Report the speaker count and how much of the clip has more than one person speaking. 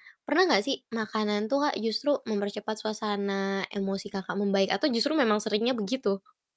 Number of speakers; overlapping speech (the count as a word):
one, no overlap